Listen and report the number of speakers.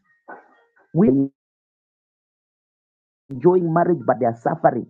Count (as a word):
one